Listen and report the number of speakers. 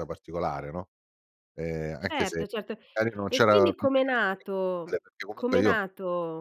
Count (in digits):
2